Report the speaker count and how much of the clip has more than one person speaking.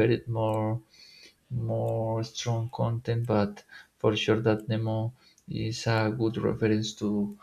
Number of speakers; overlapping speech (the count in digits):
1, no overlap